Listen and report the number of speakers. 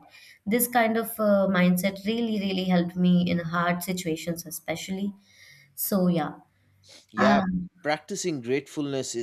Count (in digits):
2